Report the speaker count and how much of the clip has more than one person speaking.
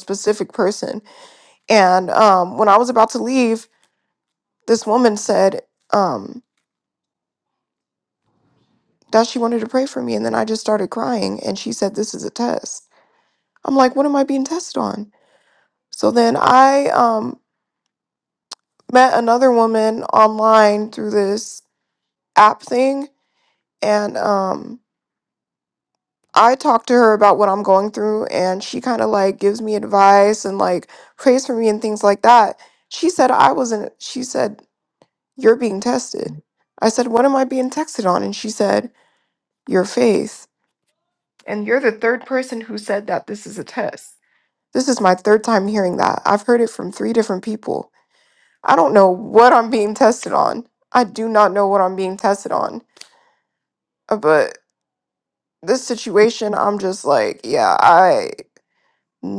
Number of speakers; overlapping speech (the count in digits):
1, no overlap